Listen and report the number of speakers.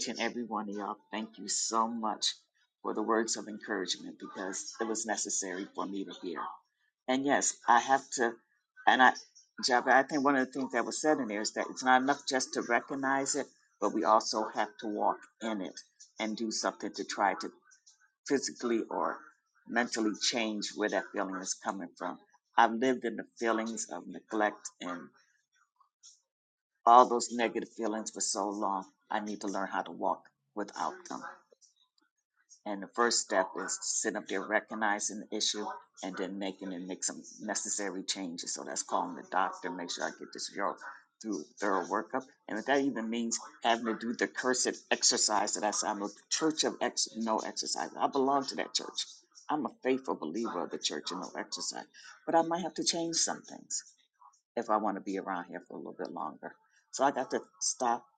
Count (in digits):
1